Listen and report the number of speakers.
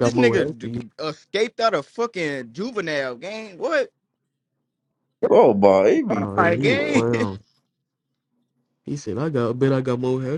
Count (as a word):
three